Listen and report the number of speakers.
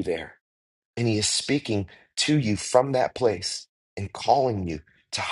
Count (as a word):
one